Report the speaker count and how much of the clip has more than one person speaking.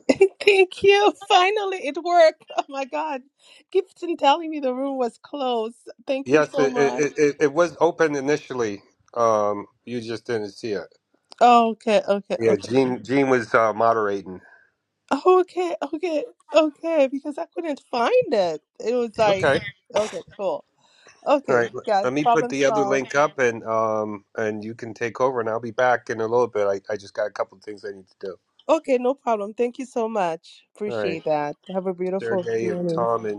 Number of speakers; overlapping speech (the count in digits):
2, about 12%